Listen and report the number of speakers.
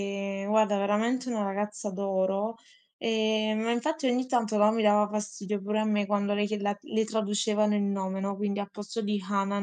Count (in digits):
1